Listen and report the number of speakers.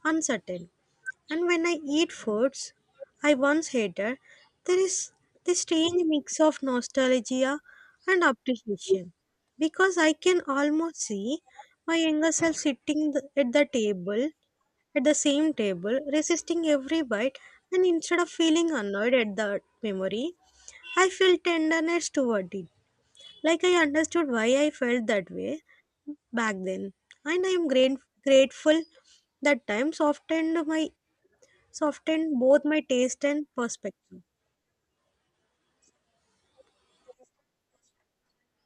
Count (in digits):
1